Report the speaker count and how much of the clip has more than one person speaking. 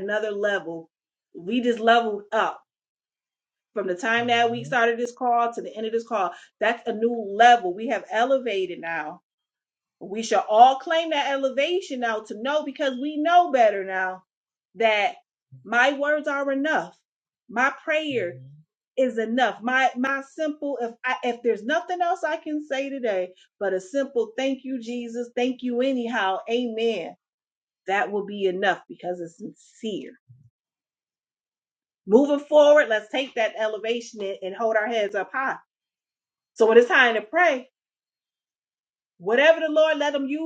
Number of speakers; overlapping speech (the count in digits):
1, no overlap